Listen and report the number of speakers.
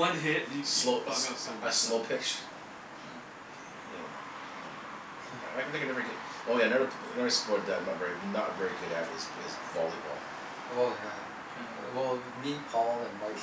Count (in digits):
3